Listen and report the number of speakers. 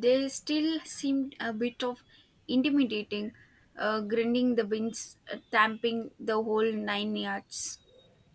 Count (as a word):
one